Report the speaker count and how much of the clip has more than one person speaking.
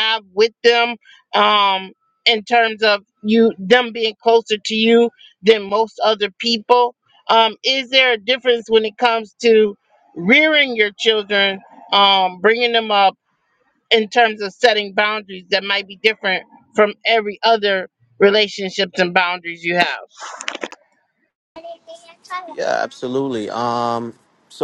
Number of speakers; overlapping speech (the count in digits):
2, no overlap